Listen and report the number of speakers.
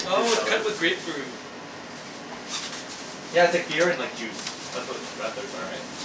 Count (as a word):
two